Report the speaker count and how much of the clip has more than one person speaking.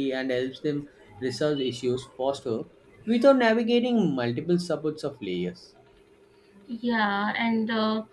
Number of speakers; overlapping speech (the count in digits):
2, no overlap